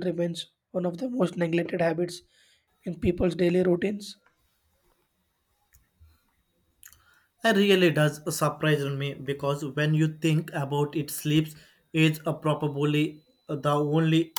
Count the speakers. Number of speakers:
two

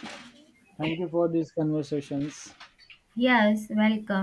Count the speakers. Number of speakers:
two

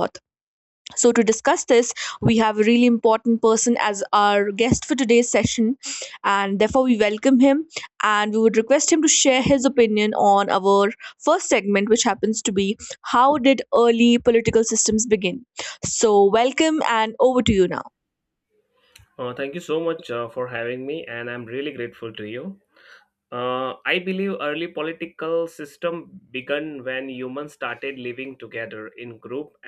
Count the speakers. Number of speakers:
two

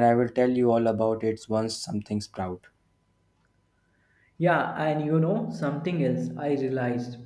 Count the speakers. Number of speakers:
two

